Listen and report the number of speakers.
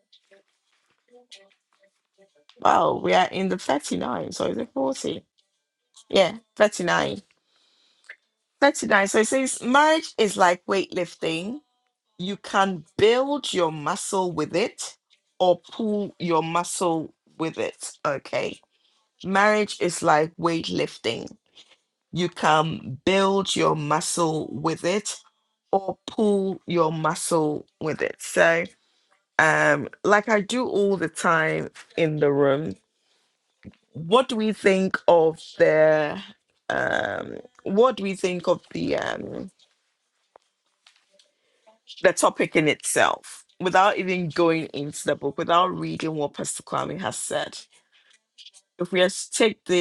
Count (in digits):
1